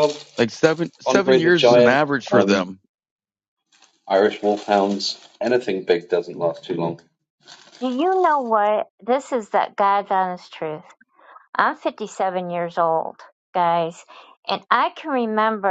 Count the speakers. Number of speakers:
3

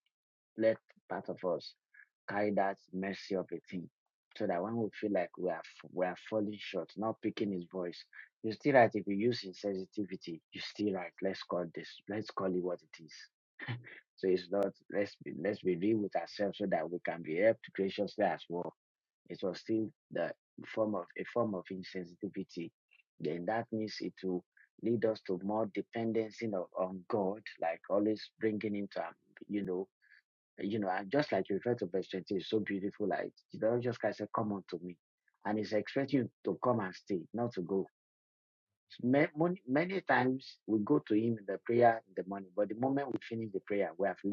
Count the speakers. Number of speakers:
1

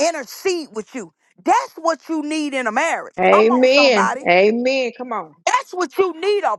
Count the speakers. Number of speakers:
2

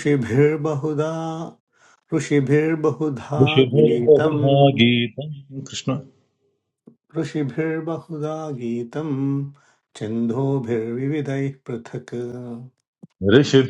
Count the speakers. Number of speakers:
2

